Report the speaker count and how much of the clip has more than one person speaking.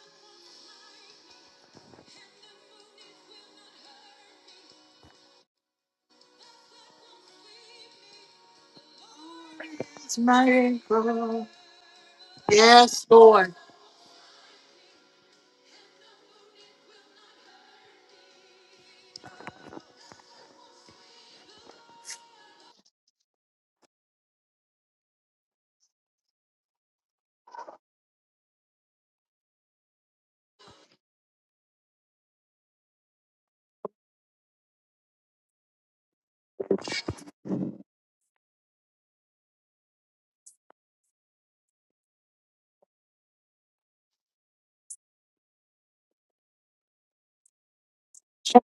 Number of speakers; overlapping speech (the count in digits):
1, no overlap